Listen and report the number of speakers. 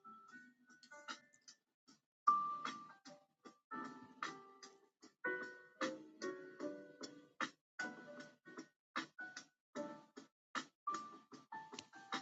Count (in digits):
0